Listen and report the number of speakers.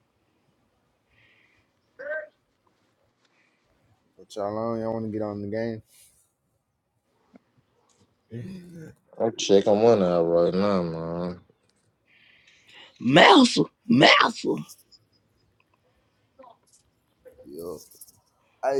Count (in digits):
3